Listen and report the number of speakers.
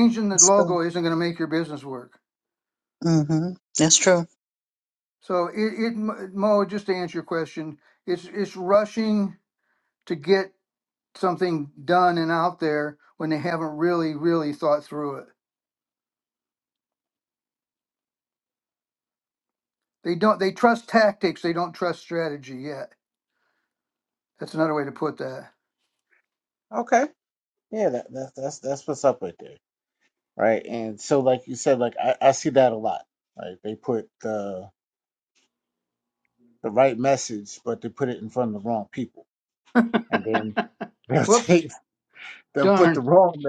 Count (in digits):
3